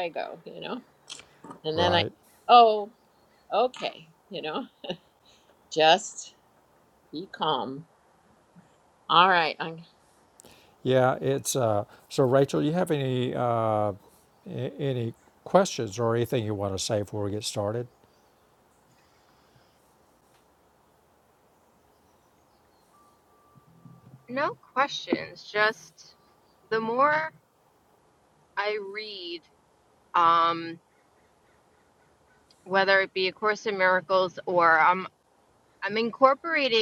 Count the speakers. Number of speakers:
3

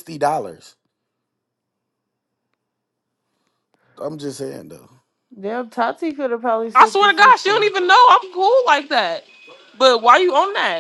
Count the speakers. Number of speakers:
3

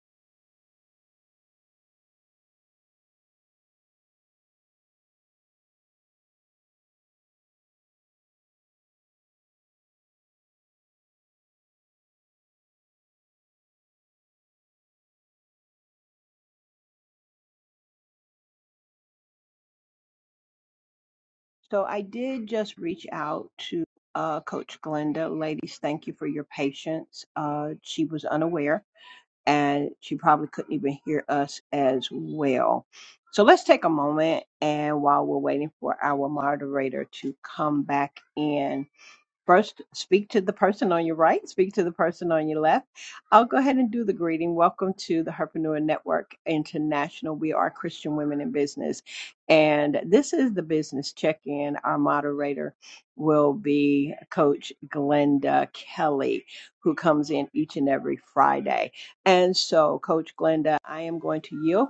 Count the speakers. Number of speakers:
1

